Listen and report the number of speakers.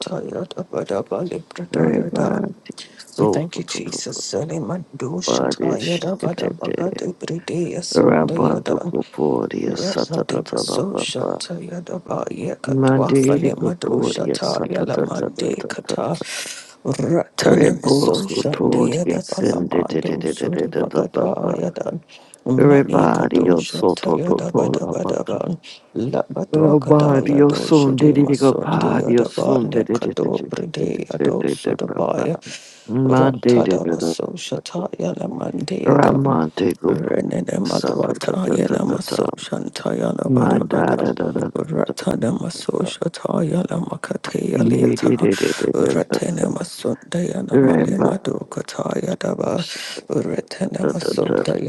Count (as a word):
two